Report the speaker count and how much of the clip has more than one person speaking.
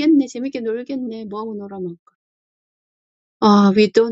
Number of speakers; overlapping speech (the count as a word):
one, no overlap